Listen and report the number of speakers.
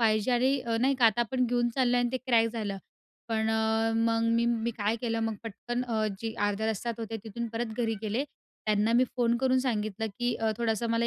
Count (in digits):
1